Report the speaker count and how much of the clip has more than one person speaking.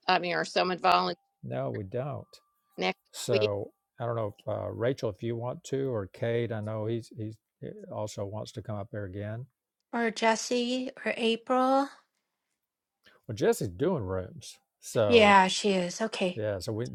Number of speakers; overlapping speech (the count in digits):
3, about 3%